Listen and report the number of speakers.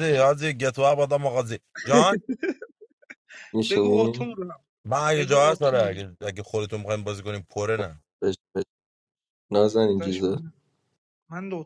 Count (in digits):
3